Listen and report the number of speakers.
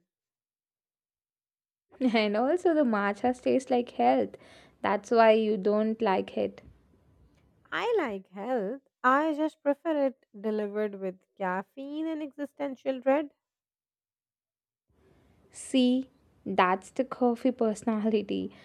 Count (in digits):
2